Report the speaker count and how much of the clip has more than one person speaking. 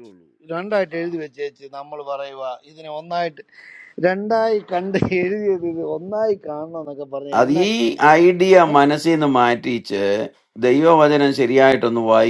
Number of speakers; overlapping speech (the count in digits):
2, about 5%